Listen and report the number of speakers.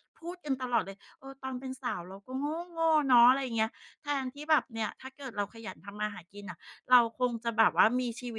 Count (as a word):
one